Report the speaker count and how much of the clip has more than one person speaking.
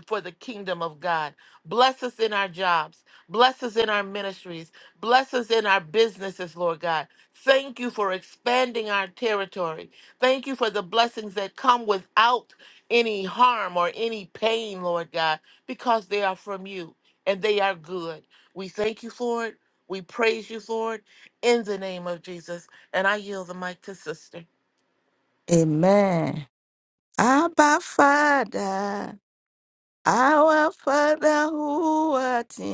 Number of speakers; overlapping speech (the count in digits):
2, no overlap